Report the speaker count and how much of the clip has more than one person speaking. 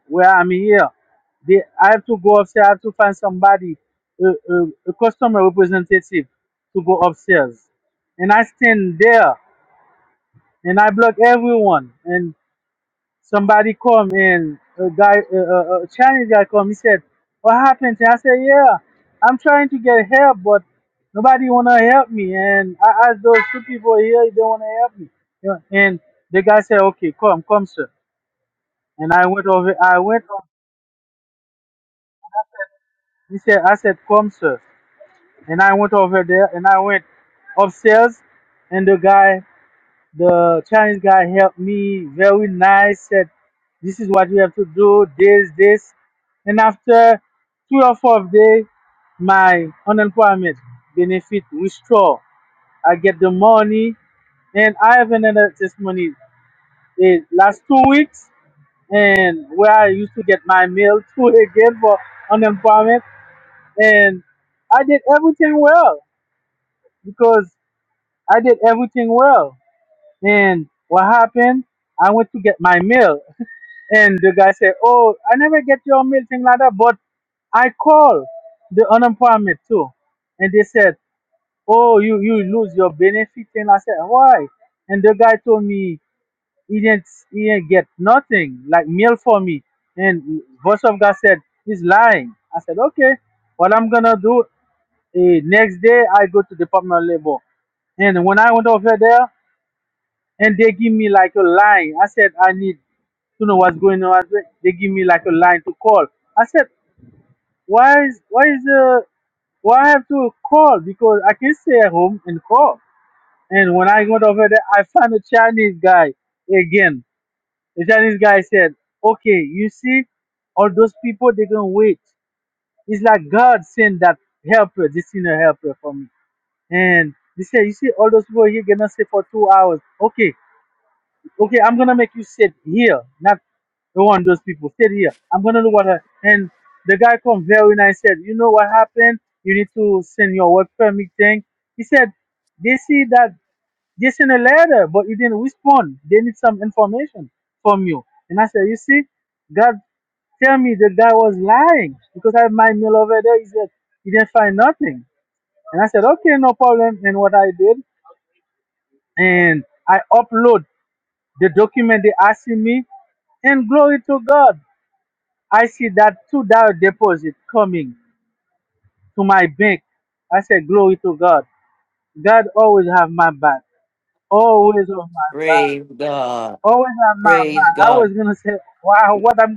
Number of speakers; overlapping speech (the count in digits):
2, about 1%